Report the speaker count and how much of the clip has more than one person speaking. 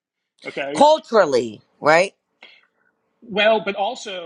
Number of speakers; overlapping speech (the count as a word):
two, about 2%